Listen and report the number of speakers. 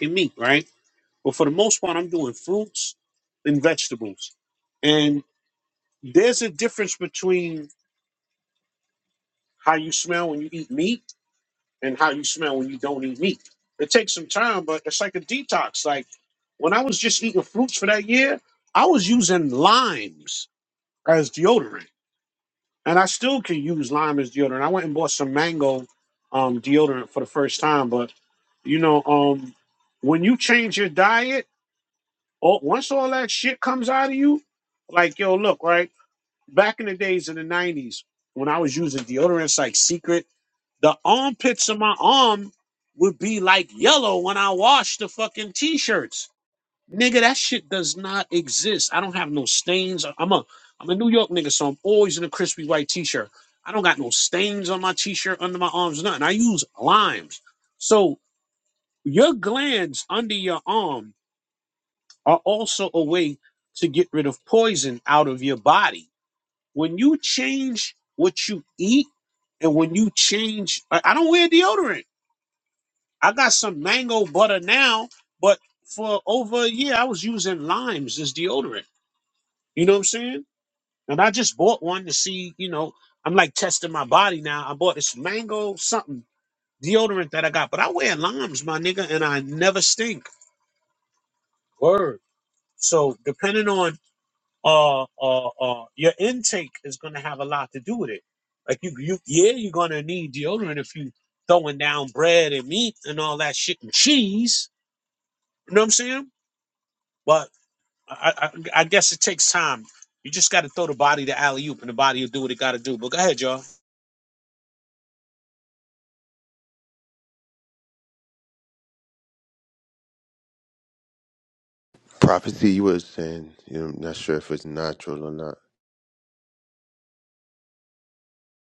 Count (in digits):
2